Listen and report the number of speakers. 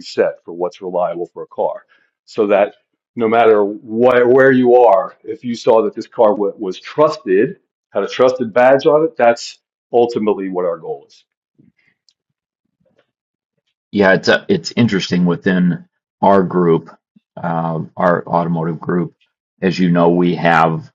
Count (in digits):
2